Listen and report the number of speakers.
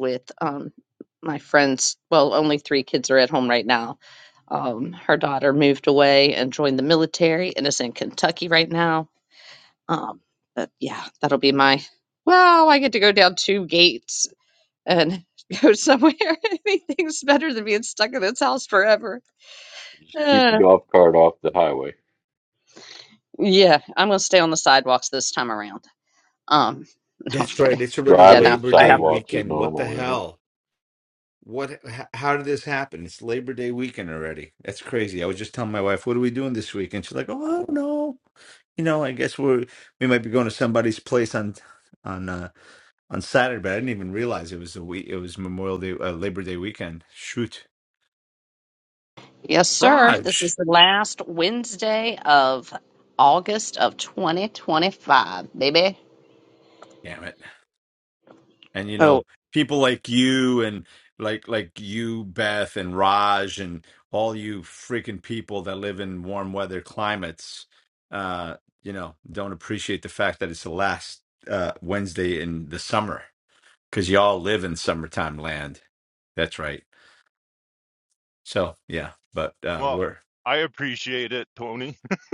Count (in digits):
4